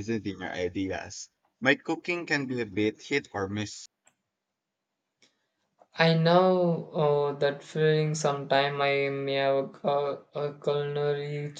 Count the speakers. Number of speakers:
2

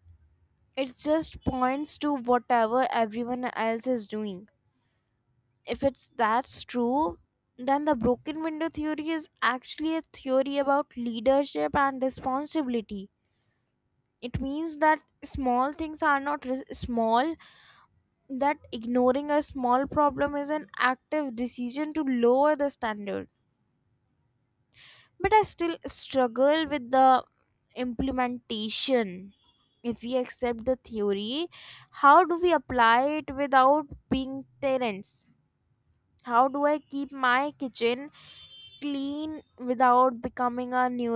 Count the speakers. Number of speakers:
1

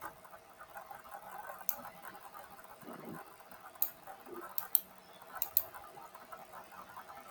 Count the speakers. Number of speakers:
0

